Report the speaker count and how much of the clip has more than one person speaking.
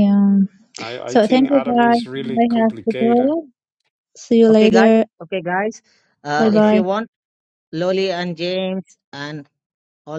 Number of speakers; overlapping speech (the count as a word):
three, about 32%